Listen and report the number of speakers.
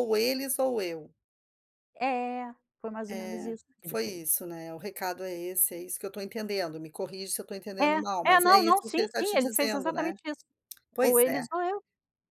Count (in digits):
2